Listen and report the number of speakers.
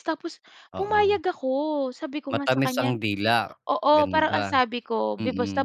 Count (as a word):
two